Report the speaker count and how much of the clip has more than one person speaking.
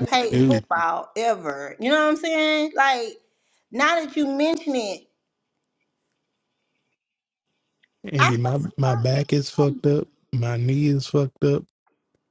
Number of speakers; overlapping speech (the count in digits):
2, about 11%